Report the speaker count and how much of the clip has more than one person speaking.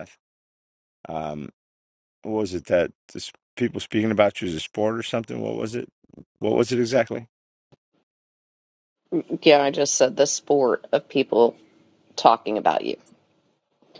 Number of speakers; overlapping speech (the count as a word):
two, no overlap